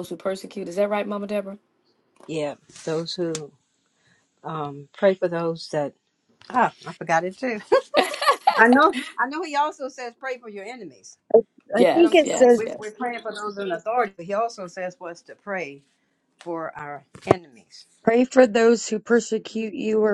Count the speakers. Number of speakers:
three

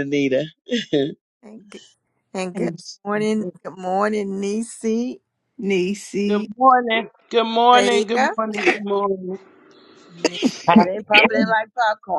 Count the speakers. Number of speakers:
four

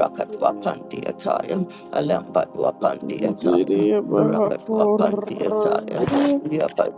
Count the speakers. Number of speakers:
two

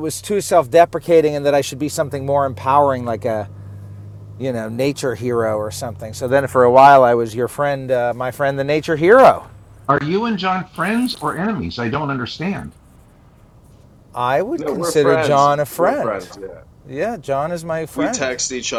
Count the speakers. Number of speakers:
three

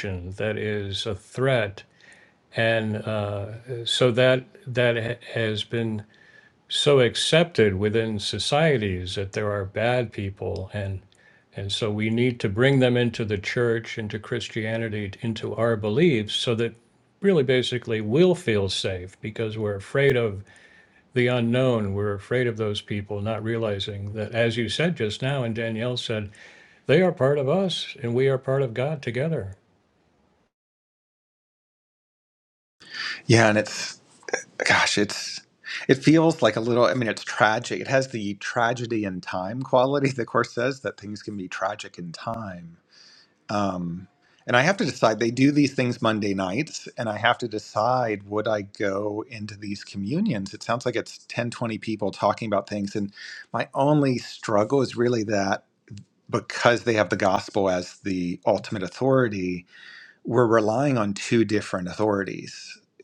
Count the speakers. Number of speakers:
two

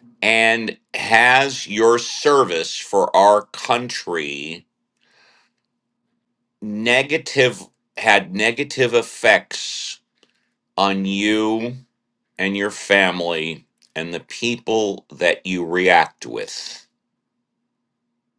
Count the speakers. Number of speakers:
one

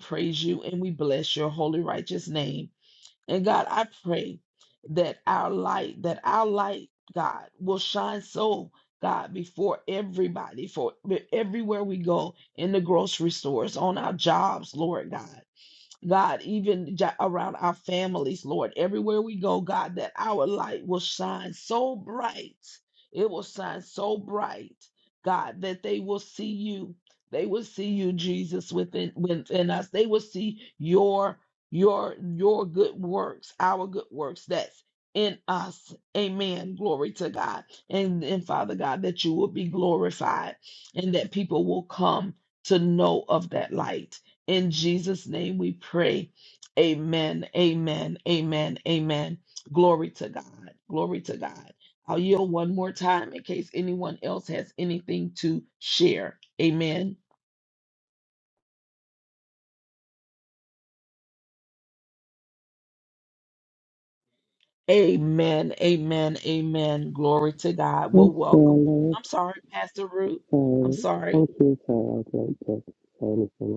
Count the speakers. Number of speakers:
two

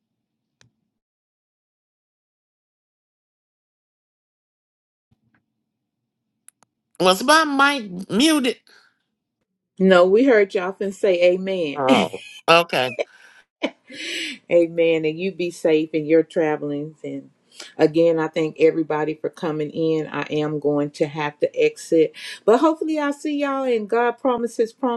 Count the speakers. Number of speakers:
two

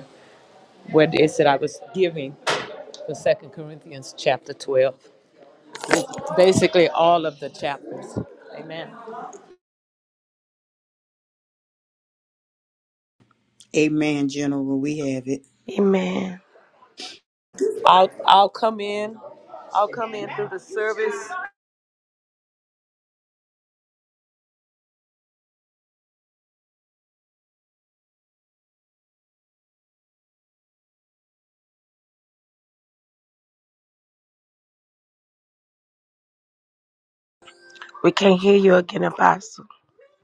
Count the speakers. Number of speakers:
three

